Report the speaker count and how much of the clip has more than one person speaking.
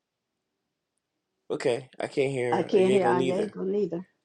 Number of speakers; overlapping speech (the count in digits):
2, about 23%